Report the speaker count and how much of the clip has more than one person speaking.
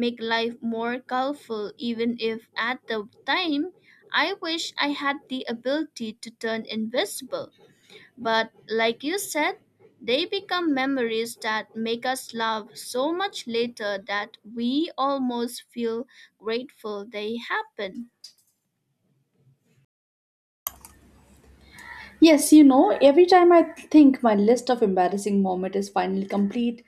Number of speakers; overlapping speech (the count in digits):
2, no overlap